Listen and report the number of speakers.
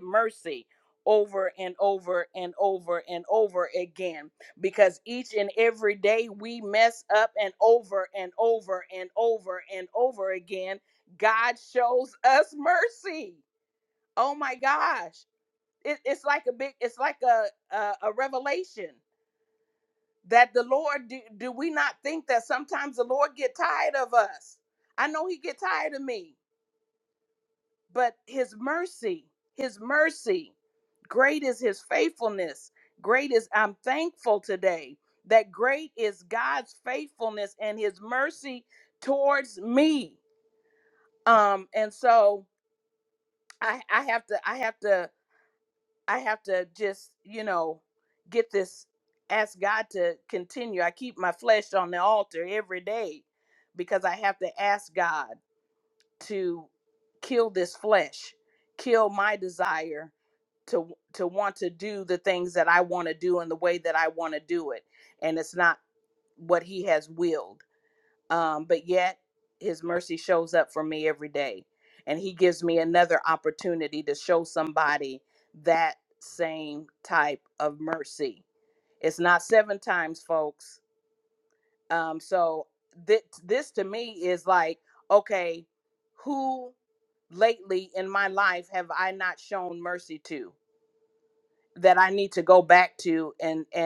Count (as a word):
one